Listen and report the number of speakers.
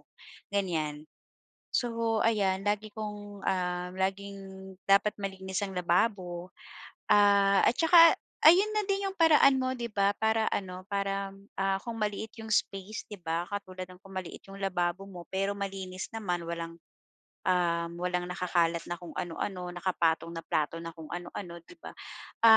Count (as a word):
one